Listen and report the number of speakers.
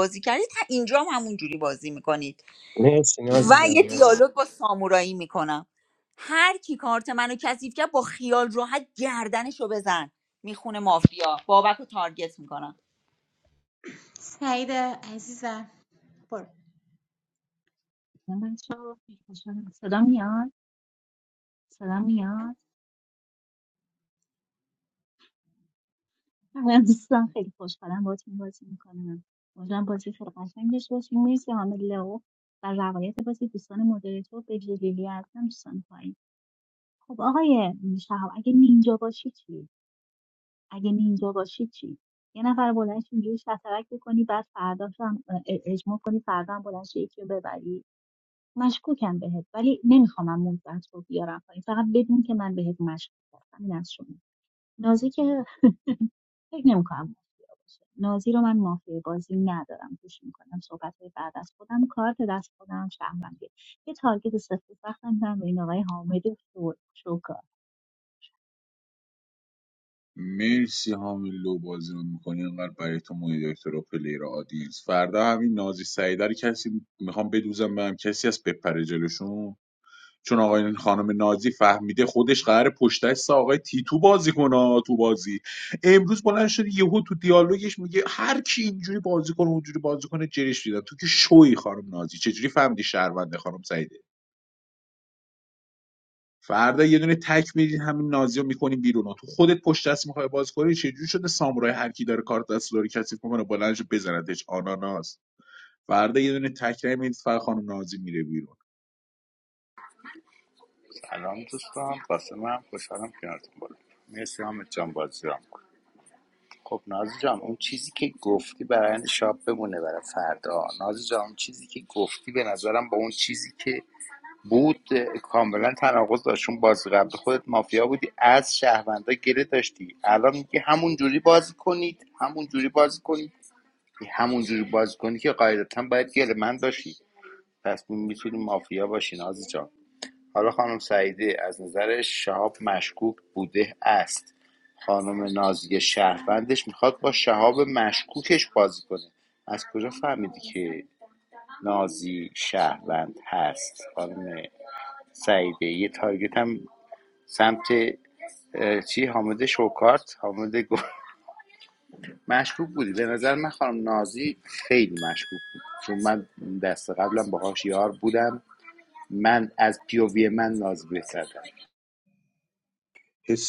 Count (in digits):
6